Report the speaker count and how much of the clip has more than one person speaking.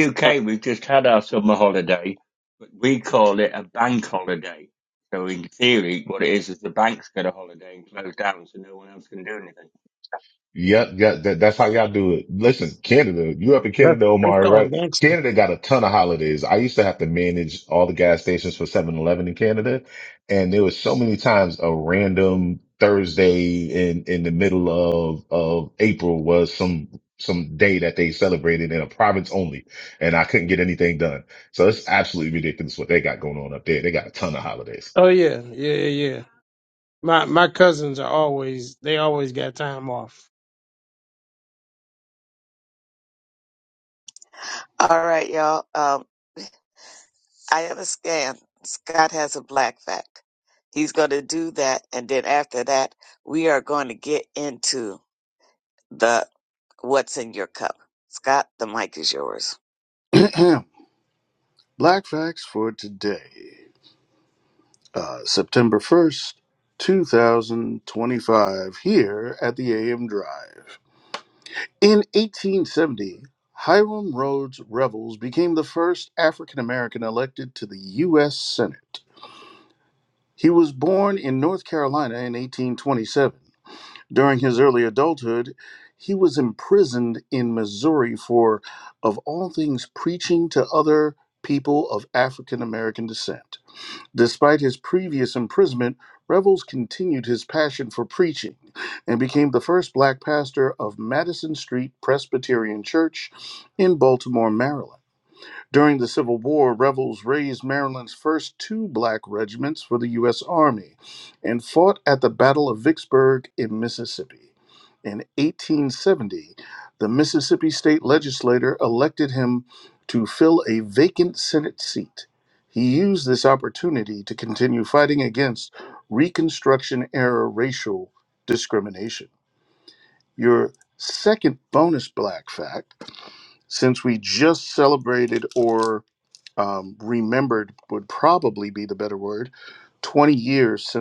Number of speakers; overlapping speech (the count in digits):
5, about 1%